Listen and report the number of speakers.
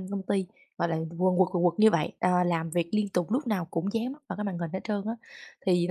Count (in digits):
1